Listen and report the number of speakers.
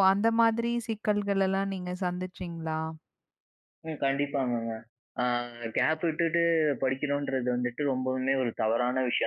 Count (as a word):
two